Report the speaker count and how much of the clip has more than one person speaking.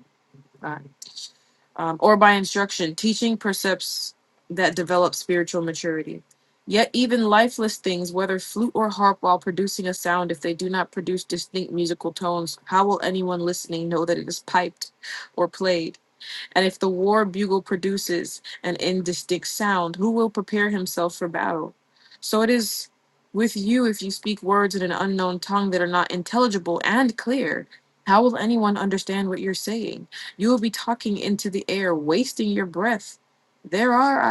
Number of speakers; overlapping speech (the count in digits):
1, no overlap